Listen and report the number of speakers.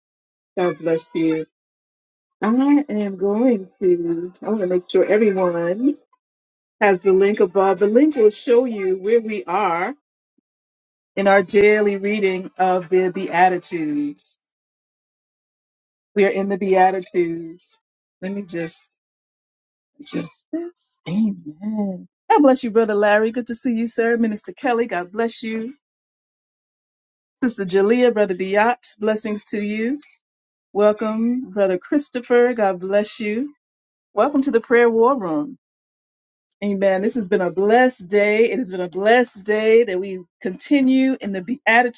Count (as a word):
one